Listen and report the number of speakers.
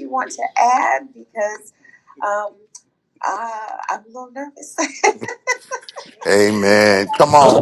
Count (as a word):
two